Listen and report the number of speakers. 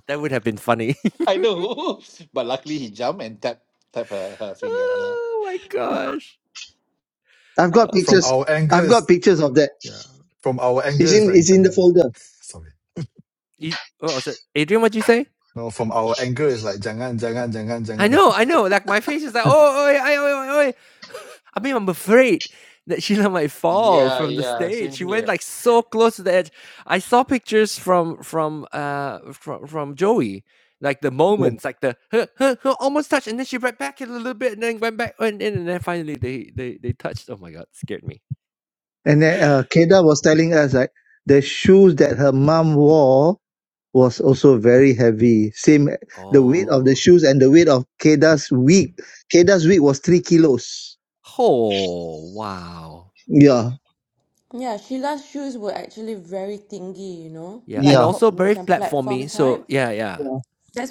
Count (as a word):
five